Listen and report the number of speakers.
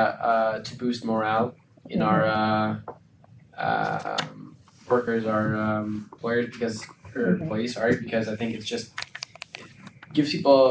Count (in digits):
1